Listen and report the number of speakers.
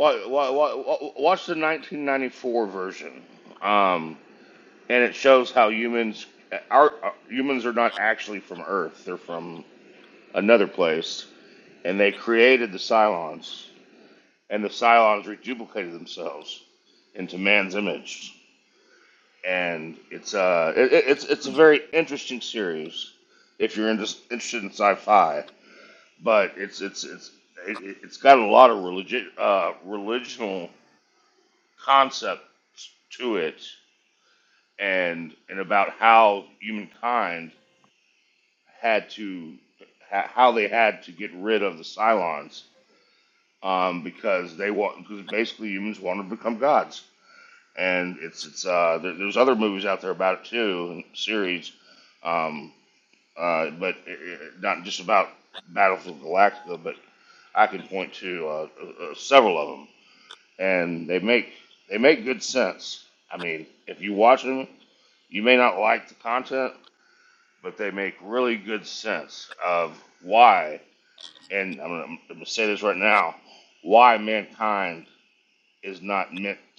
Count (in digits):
1